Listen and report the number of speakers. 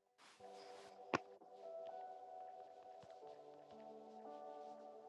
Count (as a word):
zero